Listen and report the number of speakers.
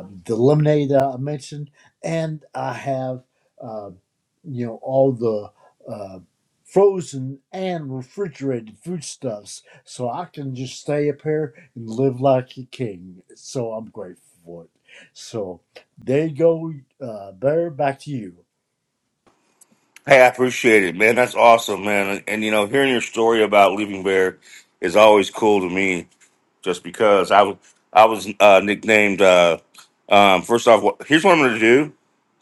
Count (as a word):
two